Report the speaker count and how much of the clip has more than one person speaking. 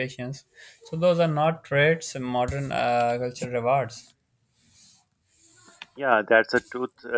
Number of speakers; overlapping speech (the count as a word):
two, no overlap